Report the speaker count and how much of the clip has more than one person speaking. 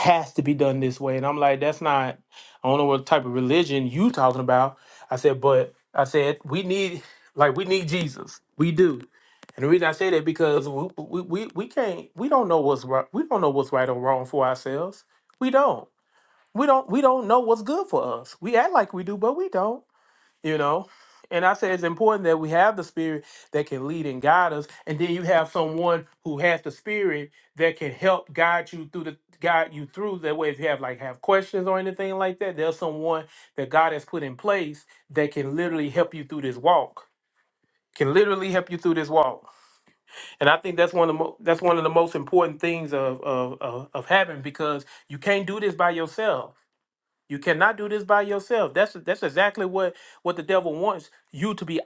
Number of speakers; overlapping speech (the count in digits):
1, no overlap